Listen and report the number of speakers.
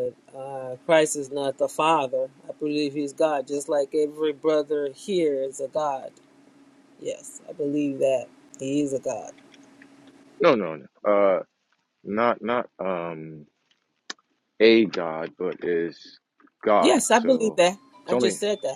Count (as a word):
two